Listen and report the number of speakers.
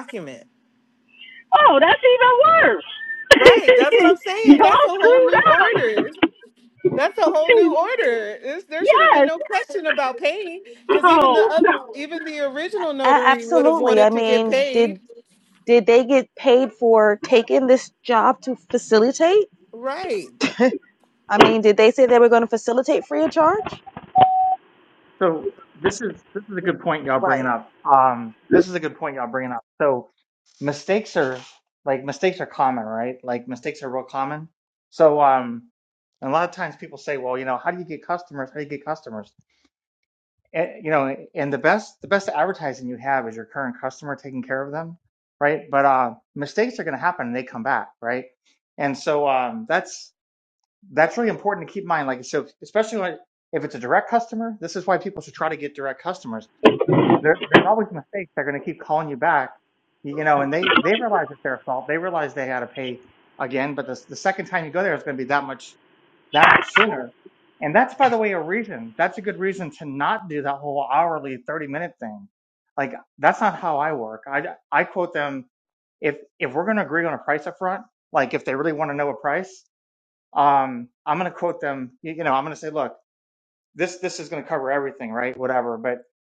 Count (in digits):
4